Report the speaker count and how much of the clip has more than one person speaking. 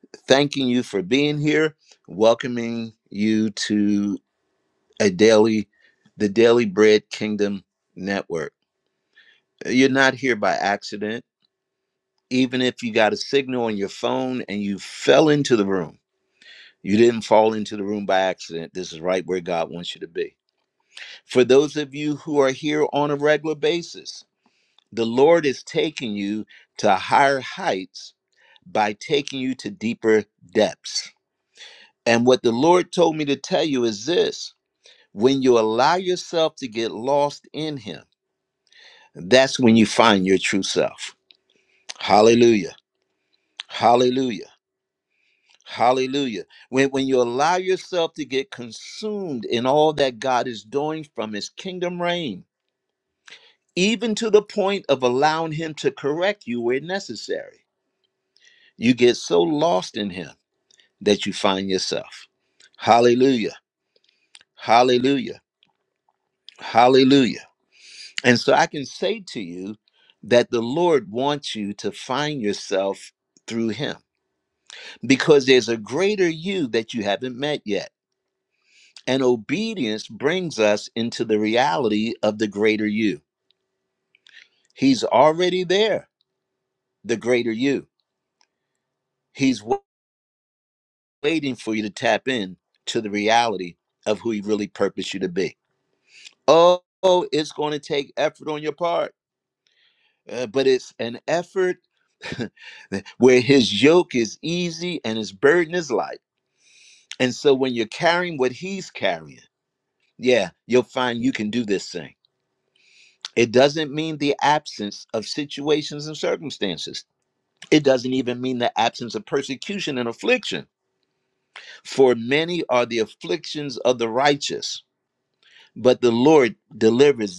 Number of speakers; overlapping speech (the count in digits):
1, no overlap